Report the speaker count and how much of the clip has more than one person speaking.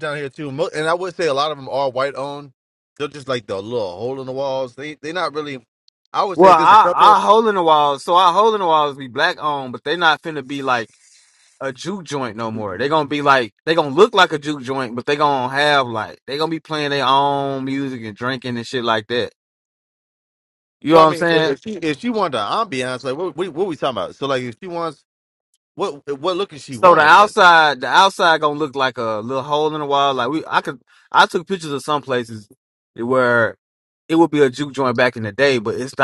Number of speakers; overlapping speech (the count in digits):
2, about 5%